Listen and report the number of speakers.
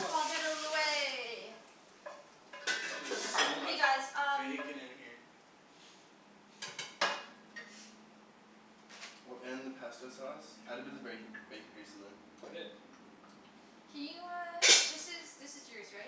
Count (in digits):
3